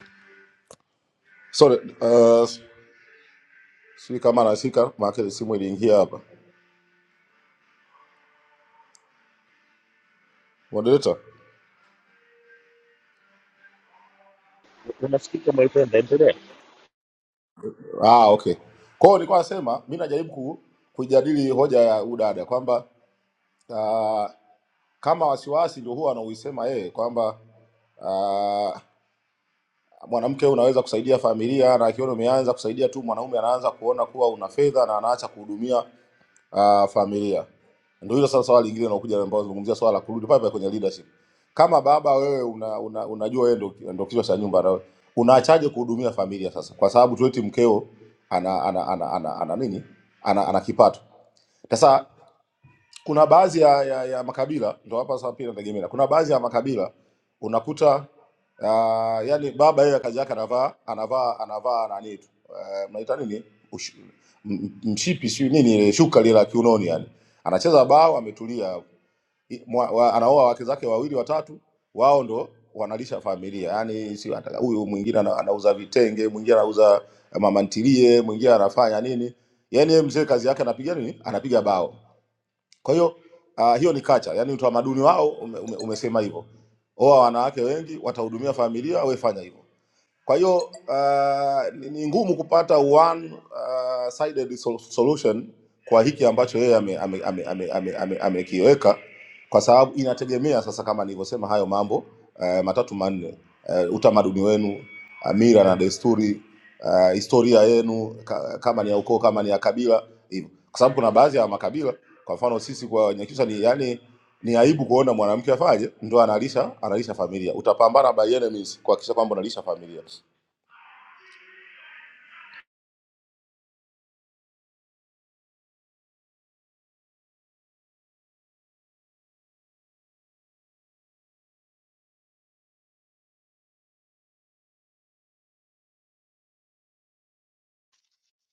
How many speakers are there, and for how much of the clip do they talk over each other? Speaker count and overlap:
2, no overlap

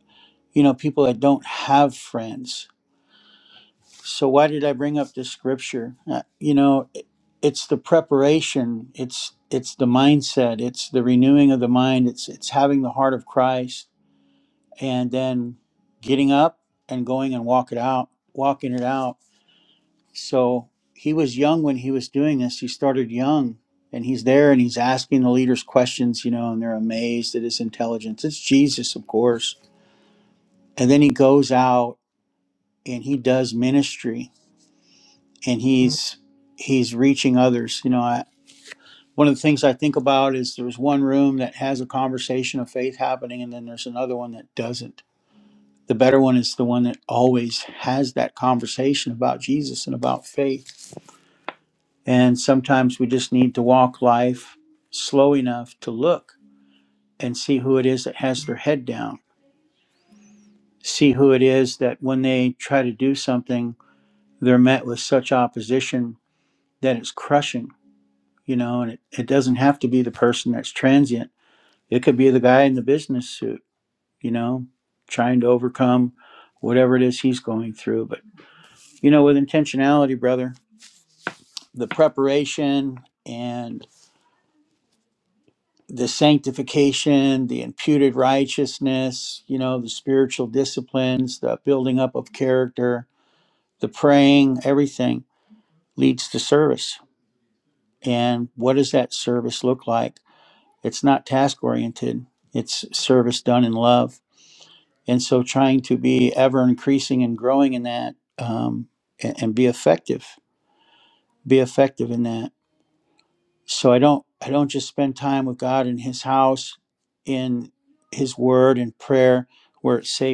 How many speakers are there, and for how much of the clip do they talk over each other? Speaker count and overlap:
1, no overlap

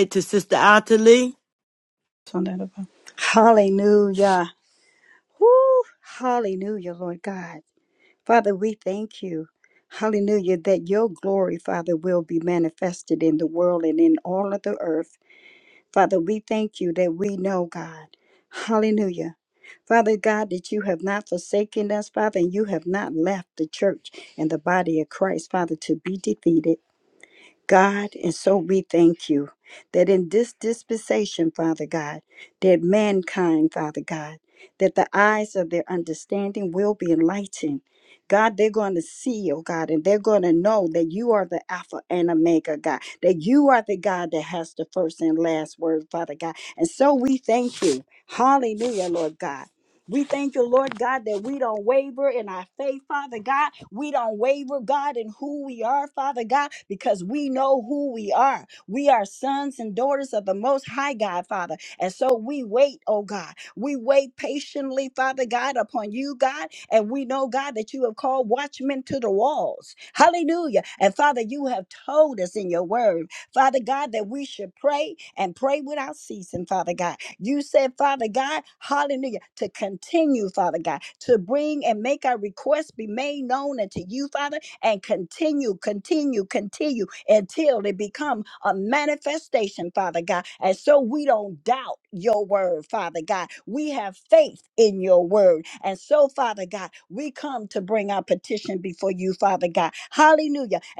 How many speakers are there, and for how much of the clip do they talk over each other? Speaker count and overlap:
2, no overlap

